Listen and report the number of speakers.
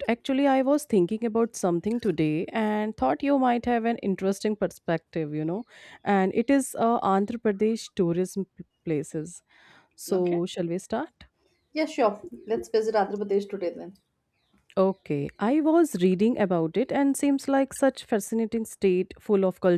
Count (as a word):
two